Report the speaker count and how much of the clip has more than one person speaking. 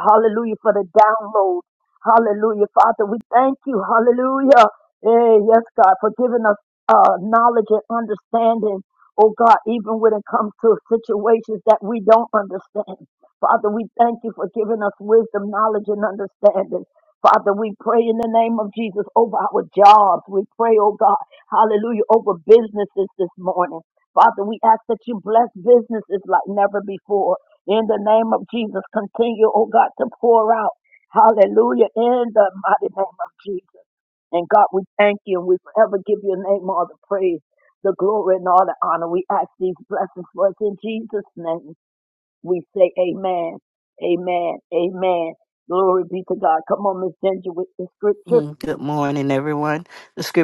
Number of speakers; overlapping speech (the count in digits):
2, under 1%